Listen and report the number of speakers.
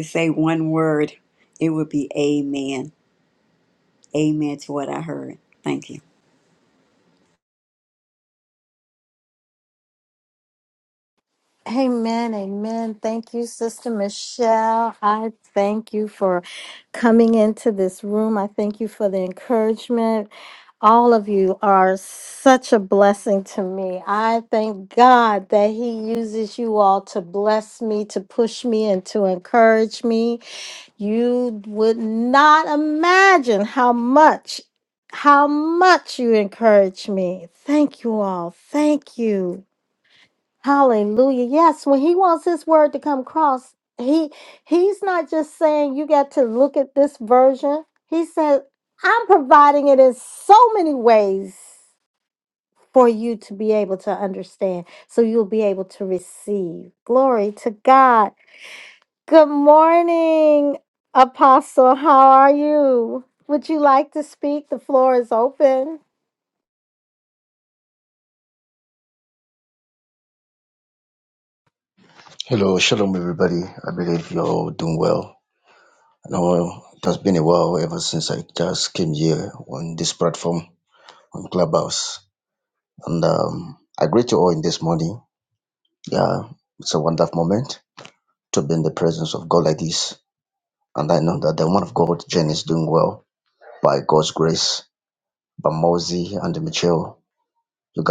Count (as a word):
three